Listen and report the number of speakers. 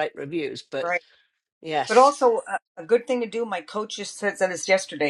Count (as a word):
two